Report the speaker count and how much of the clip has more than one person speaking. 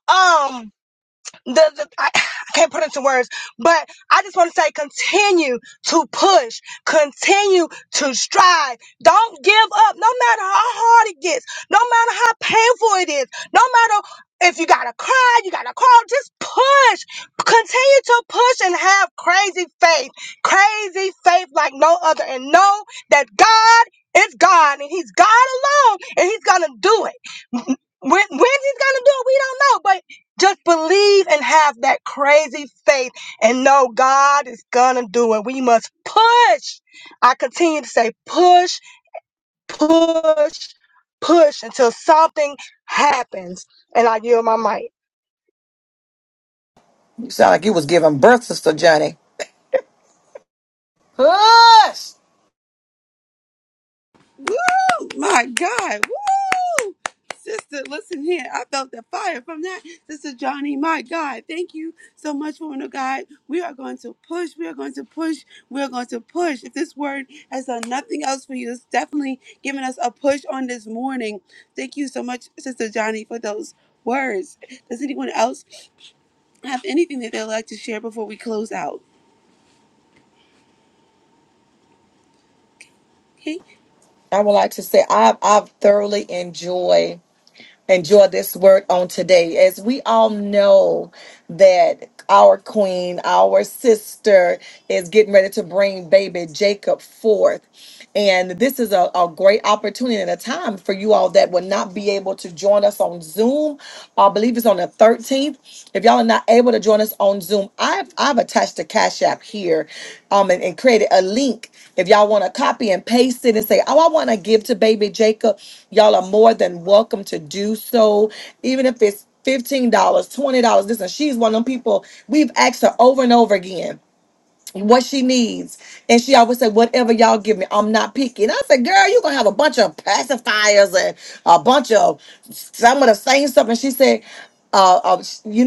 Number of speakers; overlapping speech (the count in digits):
3, no overlap